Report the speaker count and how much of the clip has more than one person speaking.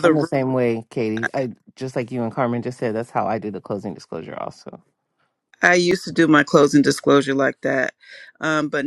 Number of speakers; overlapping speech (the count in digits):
2, about 3%